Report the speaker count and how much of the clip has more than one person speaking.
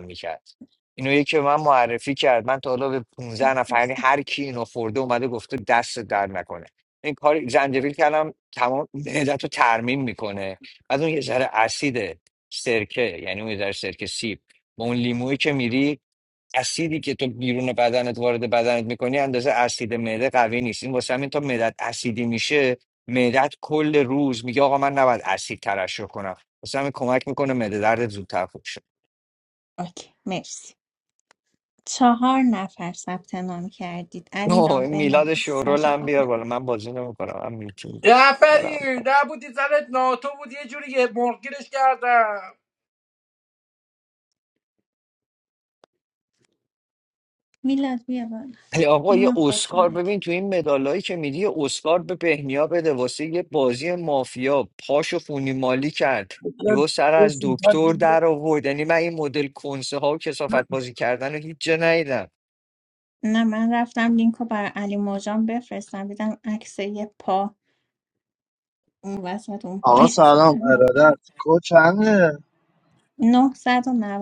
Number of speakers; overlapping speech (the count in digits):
4, about 8%